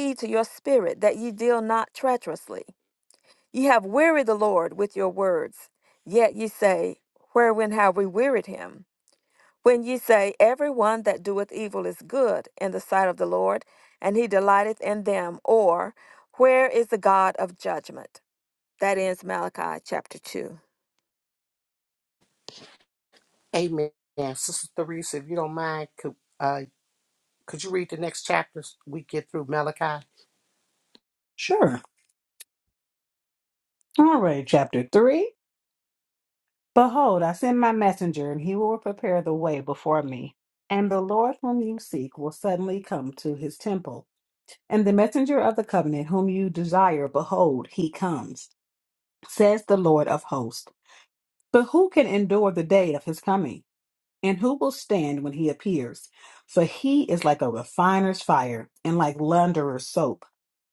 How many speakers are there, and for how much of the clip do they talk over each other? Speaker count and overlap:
3, no overlap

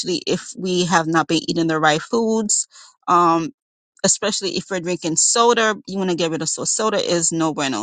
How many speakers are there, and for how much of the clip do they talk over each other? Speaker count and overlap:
1, no overlap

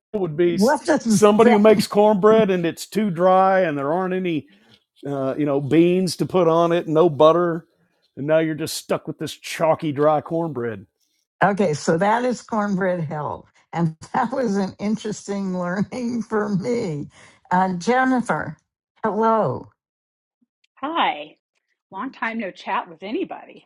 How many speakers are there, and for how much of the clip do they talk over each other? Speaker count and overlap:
3, about 3%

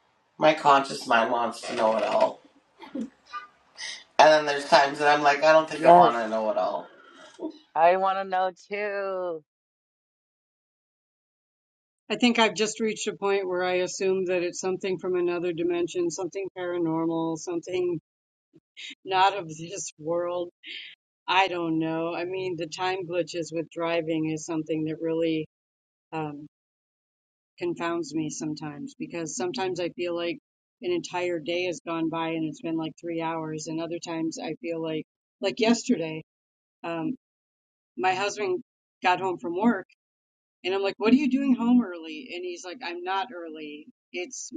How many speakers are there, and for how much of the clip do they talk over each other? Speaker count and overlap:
3, about 1%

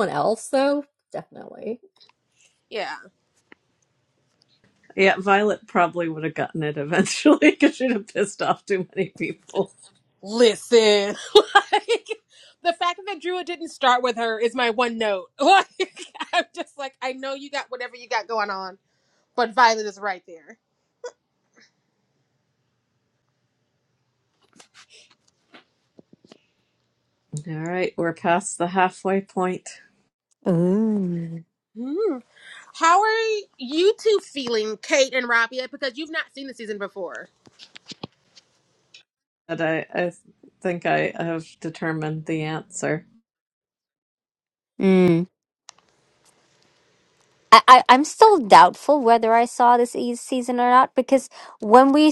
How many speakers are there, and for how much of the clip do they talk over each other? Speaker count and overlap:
4, no overlap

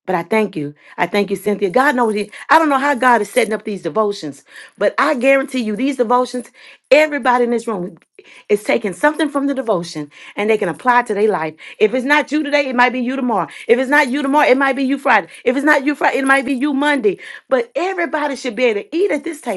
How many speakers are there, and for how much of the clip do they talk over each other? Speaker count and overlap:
1, no overlap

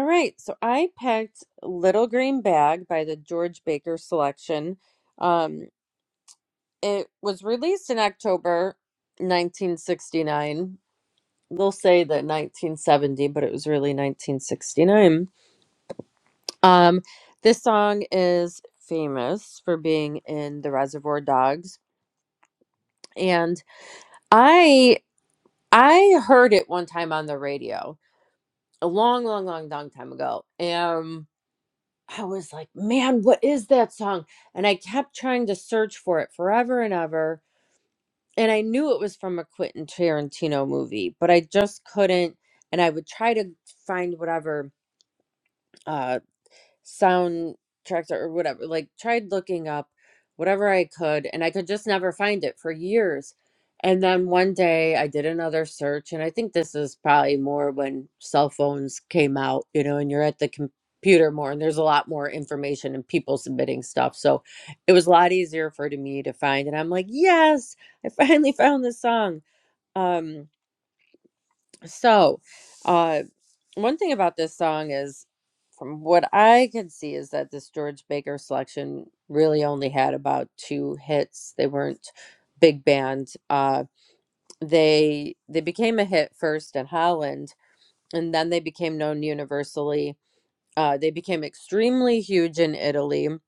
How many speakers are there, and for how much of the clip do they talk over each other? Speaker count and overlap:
1, no overlap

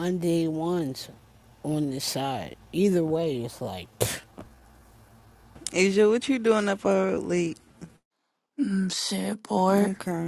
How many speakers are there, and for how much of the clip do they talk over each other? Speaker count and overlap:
3, about 2%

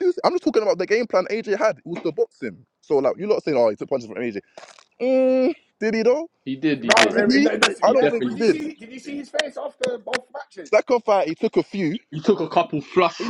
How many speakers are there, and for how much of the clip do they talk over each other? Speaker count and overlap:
3, about 13%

